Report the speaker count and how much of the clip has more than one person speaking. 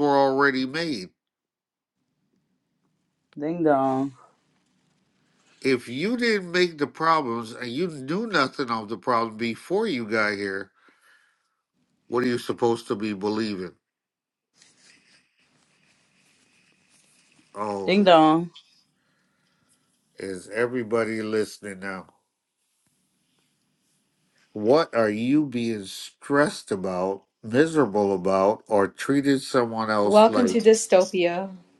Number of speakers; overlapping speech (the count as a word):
three, about 3%